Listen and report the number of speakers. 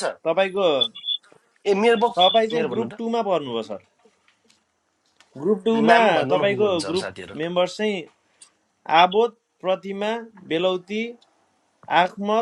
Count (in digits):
2